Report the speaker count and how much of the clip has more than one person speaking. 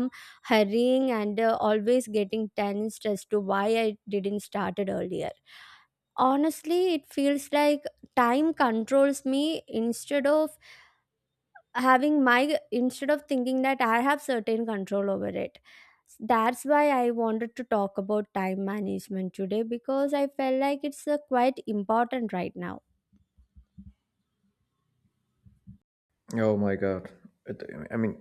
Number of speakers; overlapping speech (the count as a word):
two, no overlap